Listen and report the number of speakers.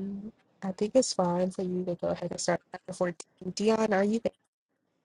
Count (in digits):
1